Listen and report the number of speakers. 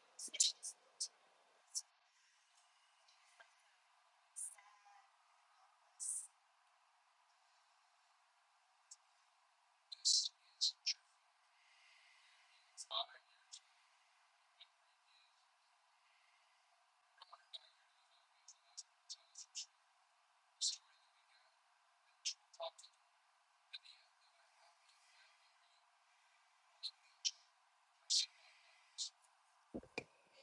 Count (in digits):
0